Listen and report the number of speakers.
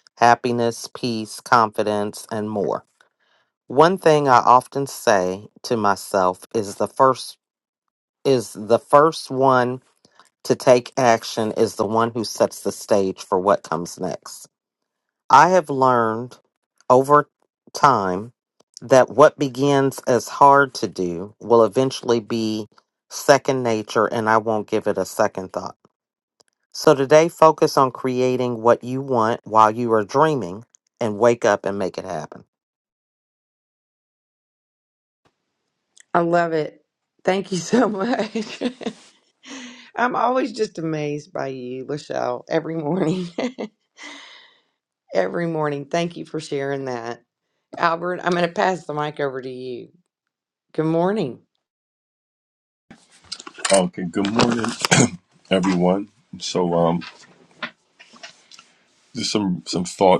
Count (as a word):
three